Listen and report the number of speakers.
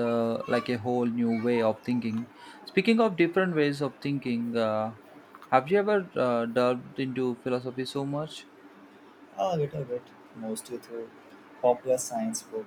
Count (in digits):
2